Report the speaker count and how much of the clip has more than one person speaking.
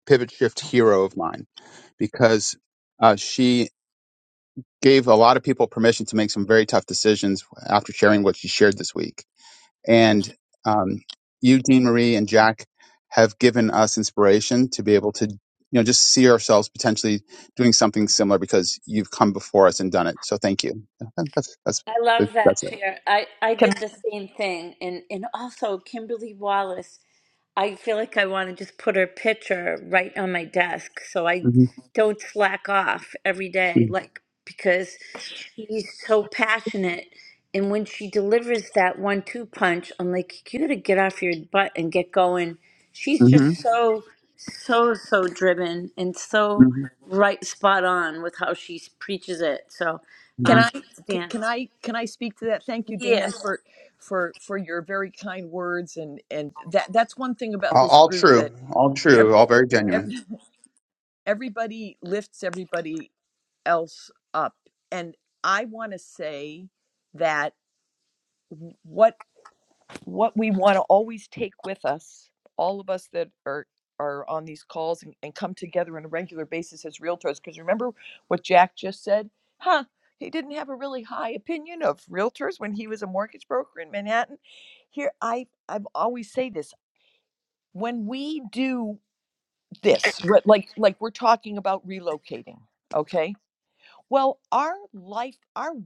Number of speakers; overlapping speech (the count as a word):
three, about 3%